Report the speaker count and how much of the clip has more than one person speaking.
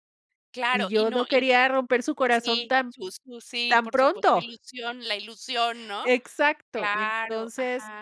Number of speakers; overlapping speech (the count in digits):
2, about 42%